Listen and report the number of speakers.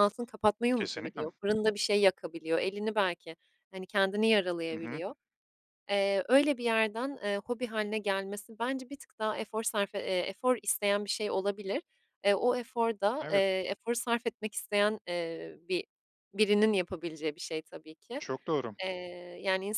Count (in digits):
2